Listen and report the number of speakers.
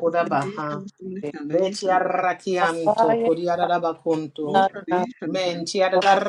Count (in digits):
3